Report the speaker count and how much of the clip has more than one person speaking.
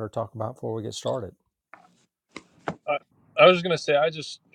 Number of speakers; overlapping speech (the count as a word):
two, no overlap